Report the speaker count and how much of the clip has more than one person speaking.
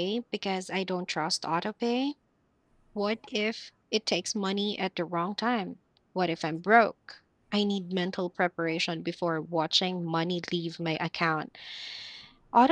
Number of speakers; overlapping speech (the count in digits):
1, no overlap